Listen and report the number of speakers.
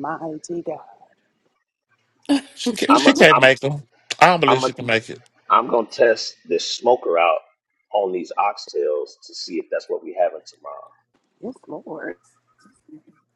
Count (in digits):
3